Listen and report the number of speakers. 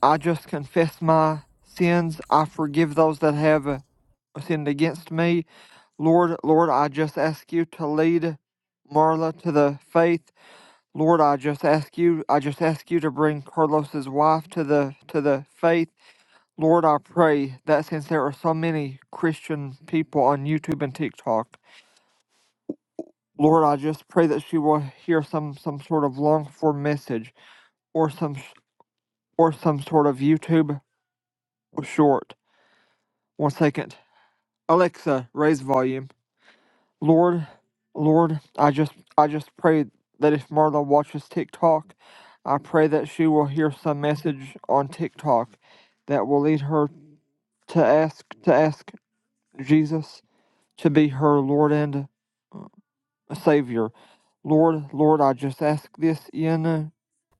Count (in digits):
1